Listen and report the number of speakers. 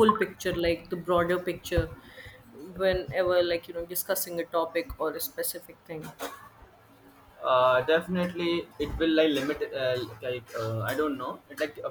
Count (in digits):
2